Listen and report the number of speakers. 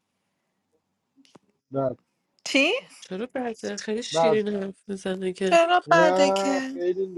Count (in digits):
3